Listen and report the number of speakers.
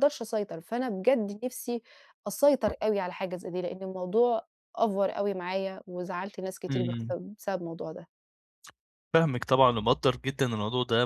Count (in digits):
2